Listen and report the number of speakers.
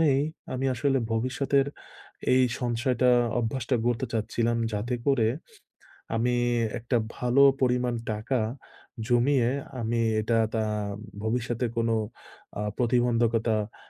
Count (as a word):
one